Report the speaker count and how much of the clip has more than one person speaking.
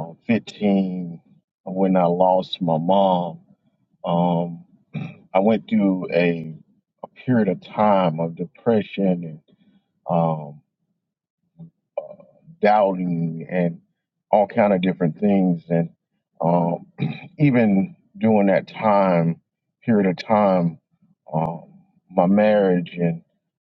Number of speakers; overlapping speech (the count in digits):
1, no overlap